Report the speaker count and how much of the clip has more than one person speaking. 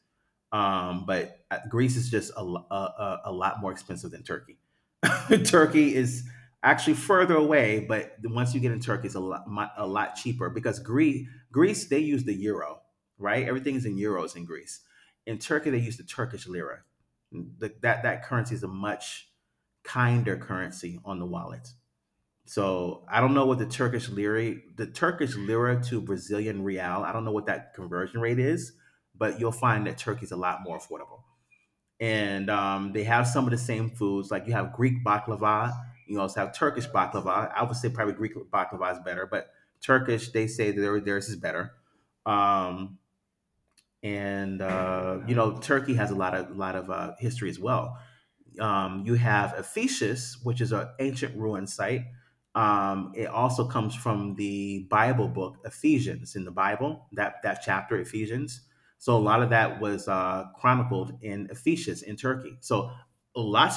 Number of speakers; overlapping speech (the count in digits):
1, no overlap